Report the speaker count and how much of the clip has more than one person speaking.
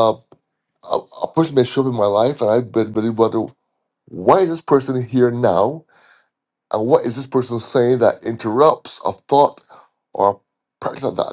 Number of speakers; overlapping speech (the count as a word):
one, no overlap